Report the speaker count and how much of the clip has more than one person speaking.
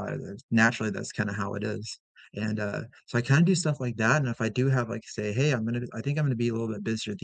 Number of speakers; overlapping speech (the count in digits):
1, no overlap